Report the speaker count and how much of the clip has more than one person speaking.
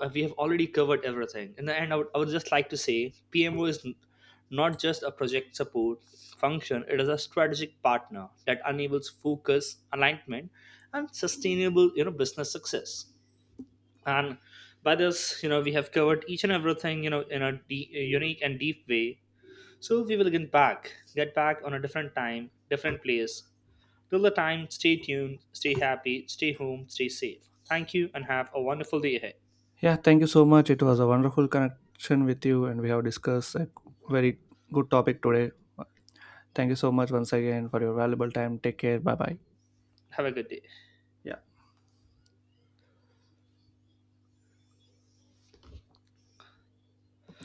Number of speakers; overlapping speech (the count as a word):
two, no overlap